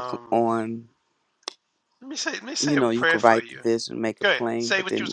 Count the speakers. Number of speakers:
2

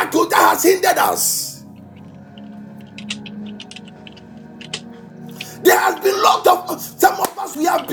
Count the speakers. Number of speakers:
1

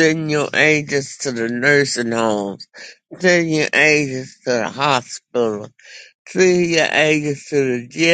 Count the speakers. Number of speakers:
1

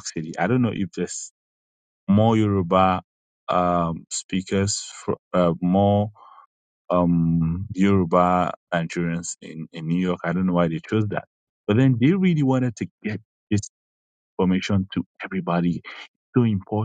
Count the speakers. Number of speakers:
1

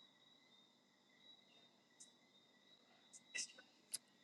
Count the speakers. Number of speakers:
0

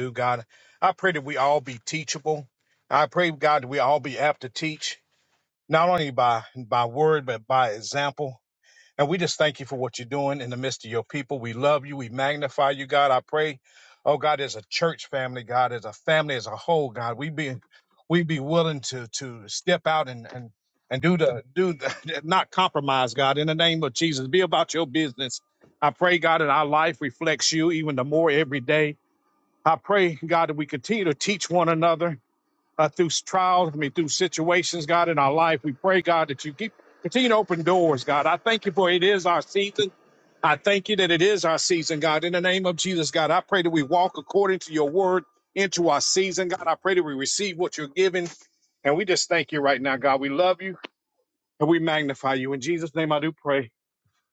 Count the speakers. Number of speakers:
1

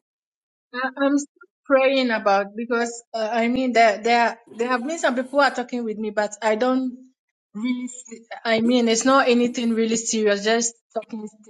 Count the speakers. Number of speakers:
1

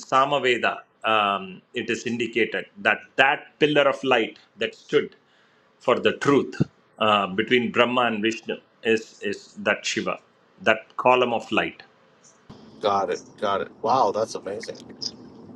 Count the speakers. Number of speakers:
2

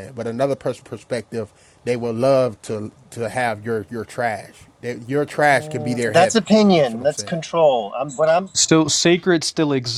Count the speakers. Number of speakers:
3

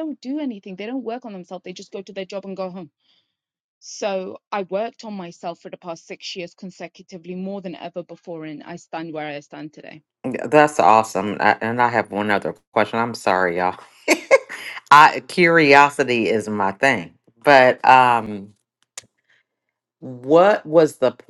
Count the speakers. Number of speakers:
2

